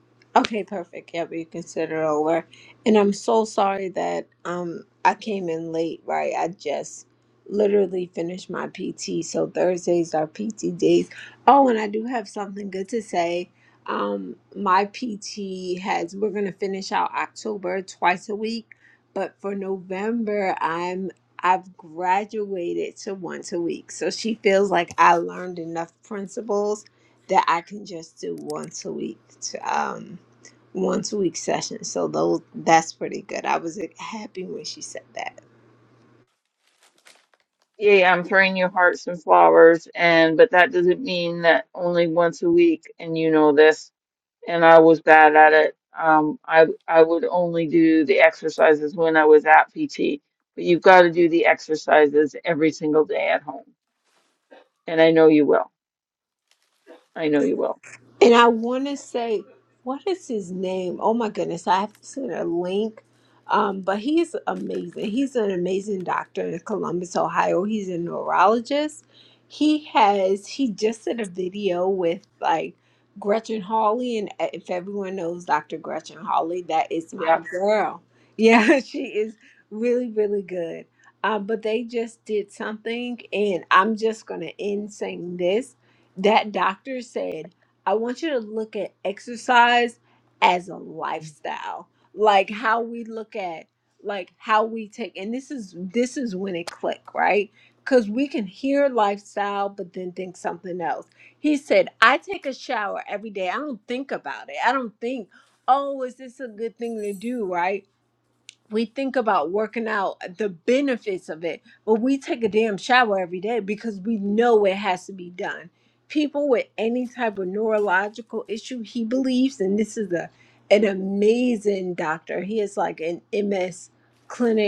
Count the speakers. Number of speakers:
2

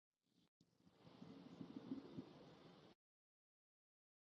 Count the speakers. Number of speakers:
0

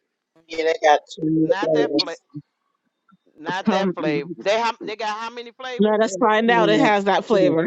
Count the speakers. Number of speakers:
3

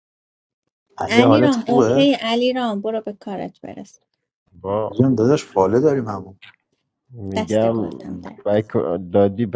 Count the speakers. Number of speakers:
3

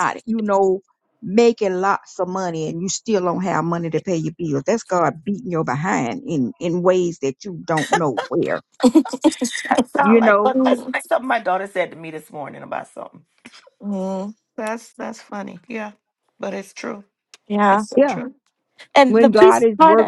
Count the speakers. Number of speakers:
3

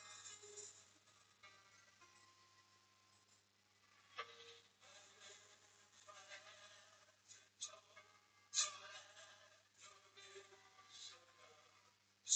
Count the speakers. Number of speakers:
0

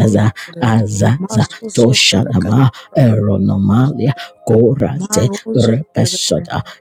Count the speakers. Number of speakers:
2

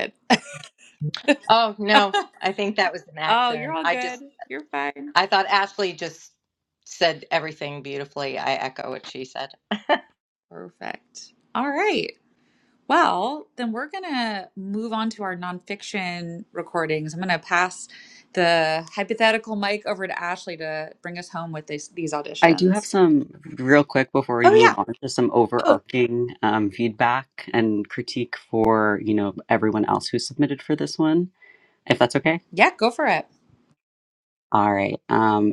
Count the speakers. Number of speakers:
3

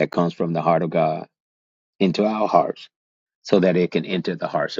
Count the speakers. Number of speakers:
1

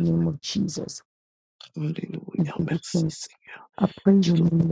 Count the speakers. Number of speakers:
2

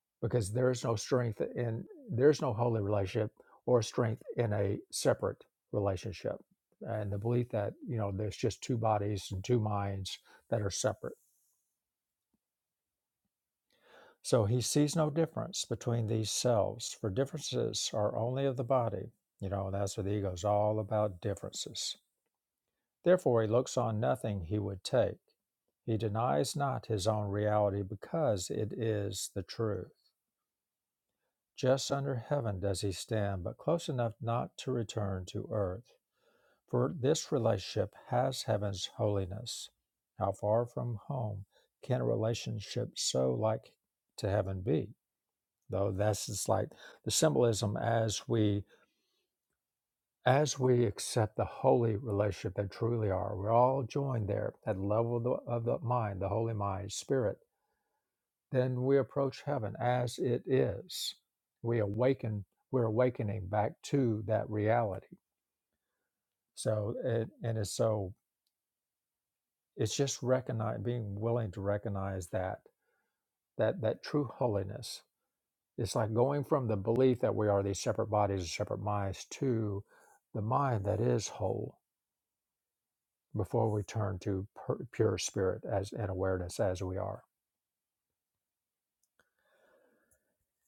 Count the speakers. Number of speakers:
1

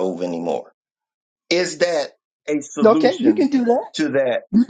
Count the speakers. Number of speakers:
2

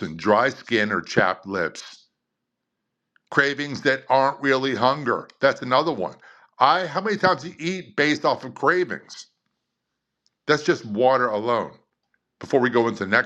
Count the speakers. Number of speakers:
1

